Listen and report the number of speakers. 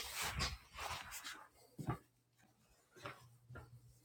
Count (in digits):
0